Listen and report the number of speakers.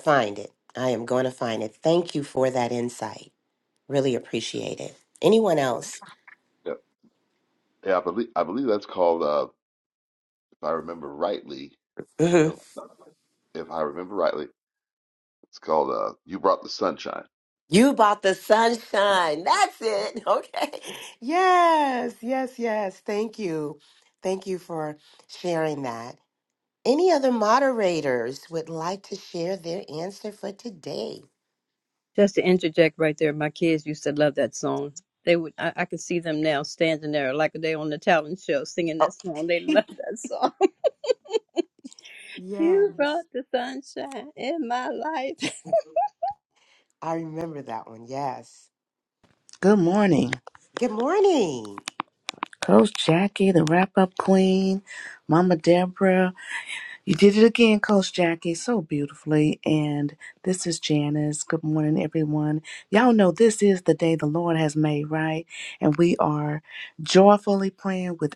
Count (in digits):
4